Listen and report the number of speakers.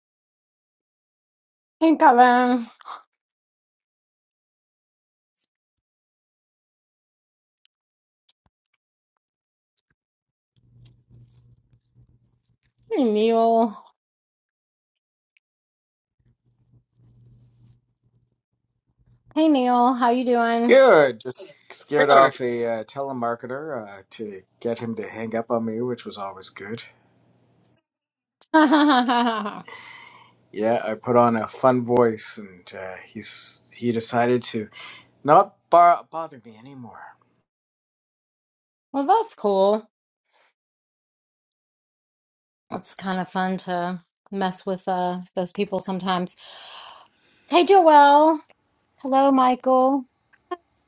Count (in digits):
2